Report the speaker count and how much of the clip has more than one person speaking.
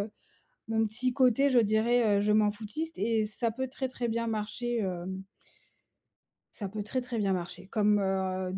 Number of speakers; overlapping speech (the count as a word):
one, no overlap